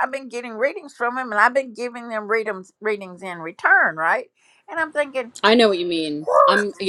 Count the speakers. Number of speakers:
2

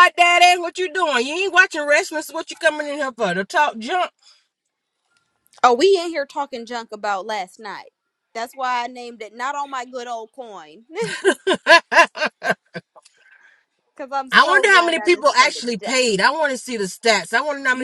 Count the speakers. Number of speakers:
2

